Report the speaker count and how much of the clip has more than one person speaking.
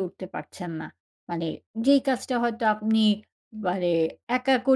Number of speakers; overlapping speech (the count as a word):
one, no overlap